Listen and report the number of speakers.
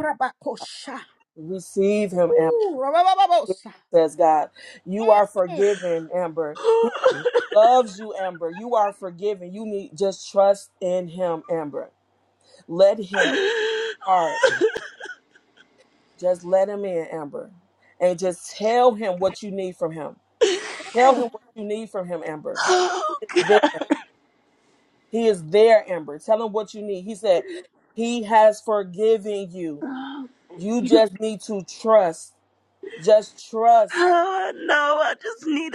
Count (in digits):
3